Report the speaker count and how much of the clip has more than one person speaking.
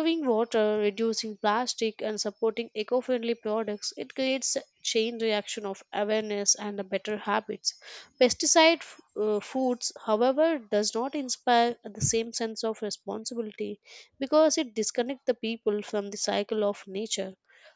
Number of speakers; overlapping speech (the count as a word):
one, no overlap